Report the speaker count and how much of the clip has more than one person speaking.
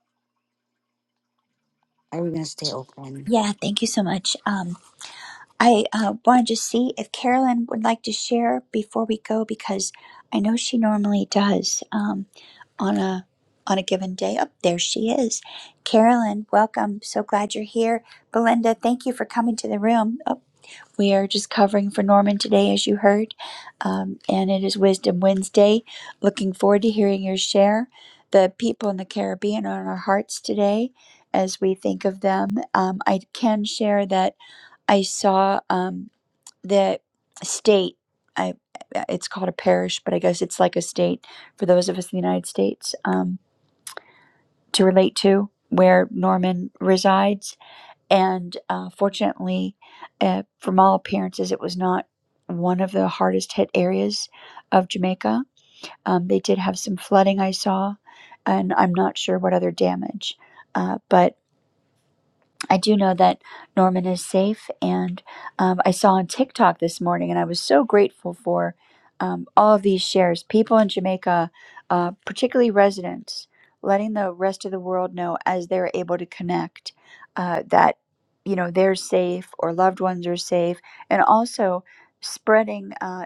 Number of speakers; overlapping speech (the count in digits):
2, under 1%